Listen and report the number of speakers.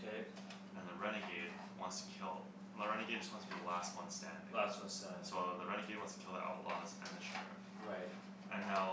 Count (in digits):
2